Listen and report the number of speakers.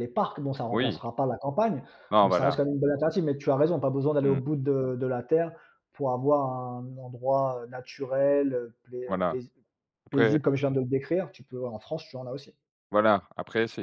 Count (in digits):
2